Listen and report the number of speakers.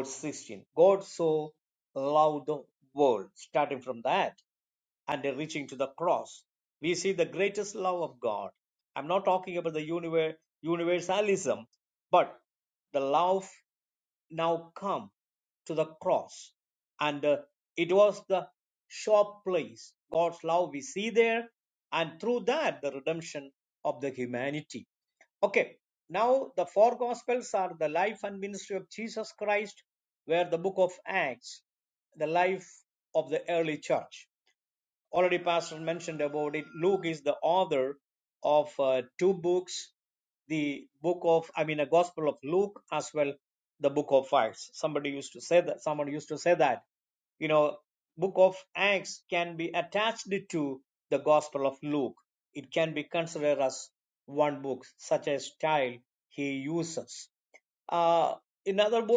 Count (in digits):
1